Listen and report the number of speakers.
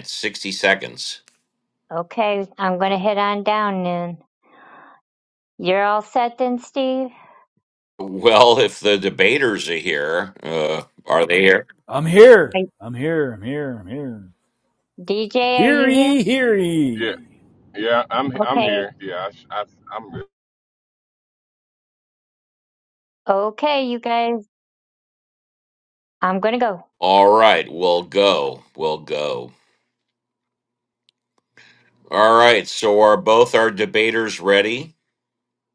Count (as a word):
four